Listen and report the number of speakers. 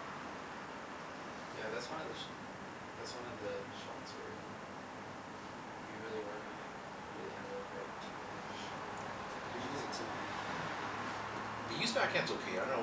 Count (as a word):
two